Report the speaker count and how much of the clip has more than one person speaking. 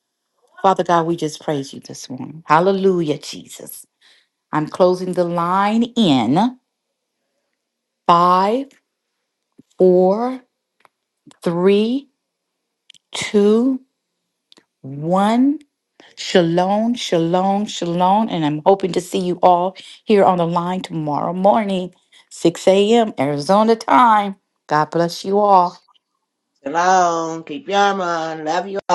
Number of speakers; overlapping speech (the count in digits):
2, no overlap